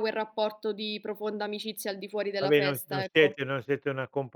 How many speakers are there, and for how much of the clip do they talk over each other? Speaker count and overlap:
two, about 22%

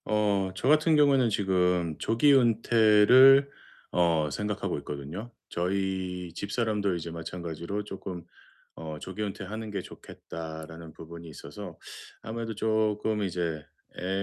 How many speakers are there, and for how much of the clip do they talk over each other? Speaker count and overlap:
one, no overlap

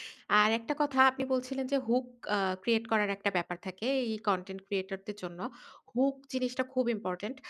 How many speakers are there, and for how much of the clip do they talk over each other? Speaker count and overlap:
one, no overlap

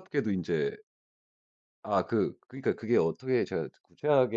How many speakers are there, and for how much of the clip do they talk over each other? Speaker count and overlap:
one, no overlap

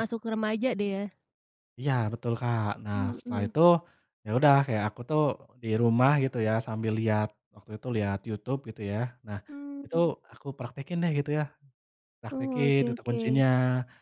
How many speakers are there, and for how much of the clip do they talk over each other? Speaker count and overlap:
two, about 14%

